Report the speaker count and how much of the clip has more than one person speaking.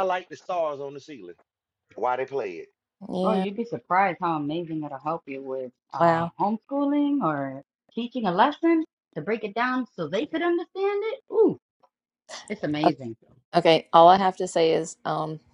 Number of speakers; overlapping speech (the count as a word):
three, about 4%